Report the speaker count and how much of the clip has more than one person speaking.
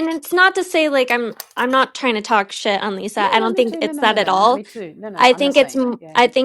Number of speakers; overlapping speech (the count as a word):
two, about 38%